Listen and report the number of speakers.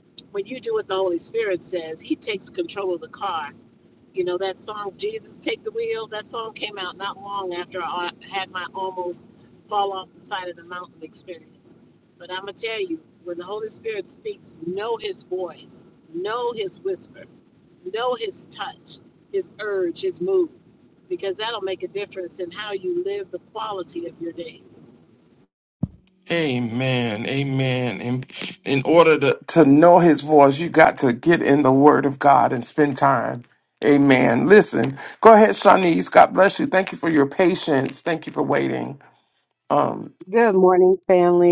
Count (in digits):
3